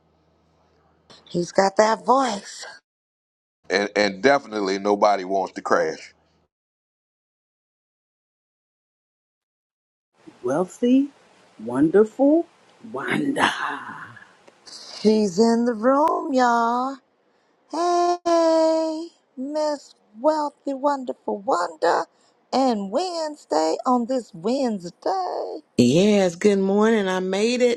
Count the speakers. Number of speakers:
4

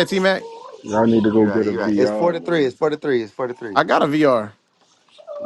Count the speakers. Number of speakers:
3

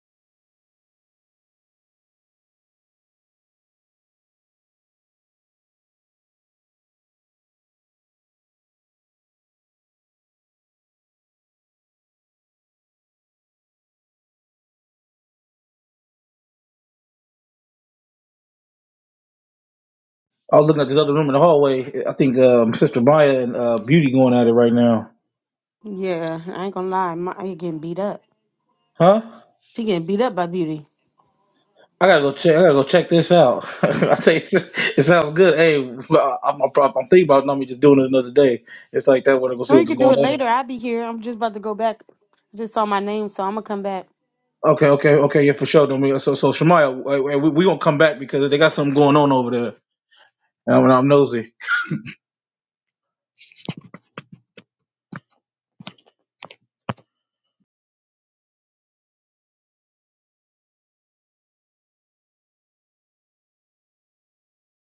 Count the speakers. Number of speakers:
2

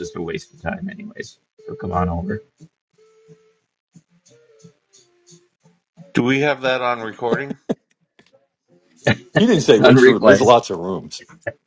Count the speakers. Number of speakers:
3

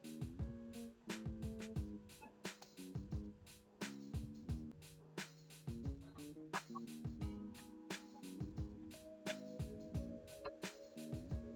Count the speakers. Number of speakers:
0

